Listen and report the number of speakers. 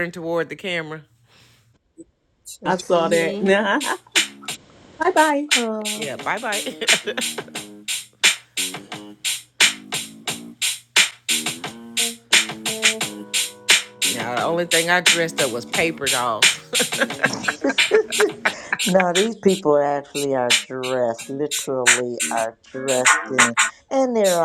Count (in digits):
3